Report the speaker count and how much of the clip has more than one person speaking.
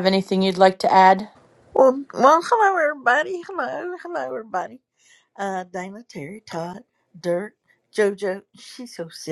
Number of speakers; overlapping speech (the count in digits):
2, no overlap